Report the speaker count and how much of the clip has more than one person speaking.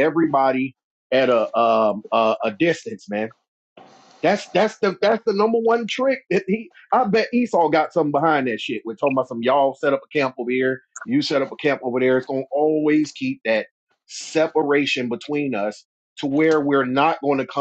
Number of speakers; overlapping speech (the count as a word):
one, no overlap